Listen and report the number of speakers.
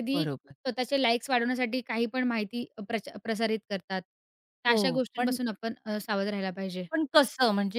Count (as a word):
two